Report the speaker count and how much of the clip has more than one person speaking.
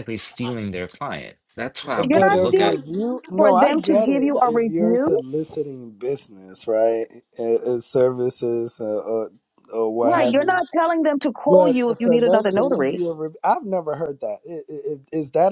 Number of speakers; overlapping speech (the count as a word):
three, about 31%